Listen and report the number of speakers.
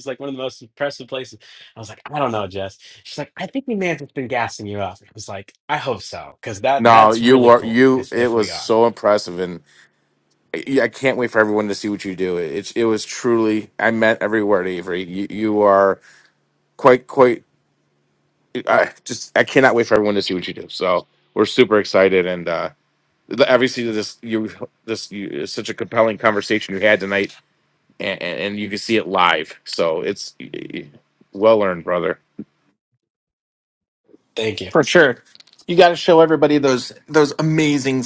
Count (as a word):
three